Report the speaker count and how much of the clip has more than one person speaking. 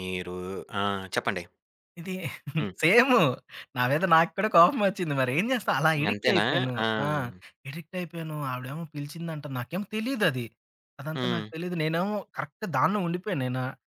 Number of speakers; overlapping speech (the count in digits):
2, about 9%